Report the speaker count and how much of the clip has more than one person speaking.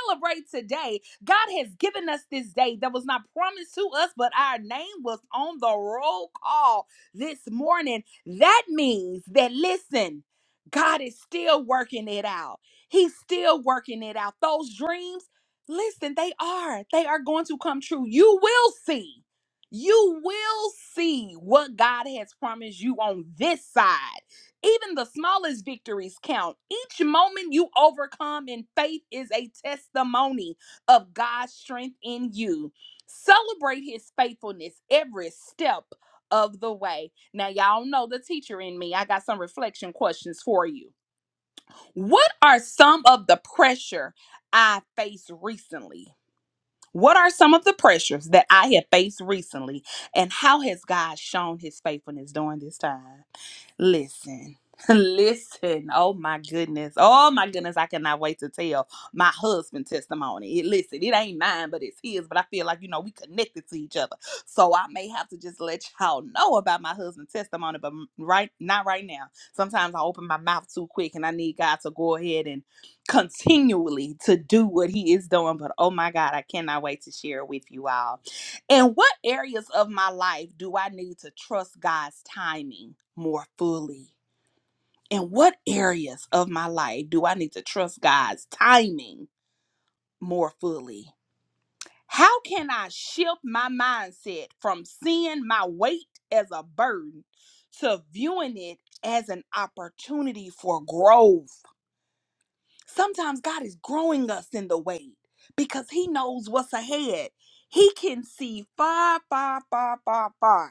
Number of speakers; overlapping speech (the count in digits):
1, no overlap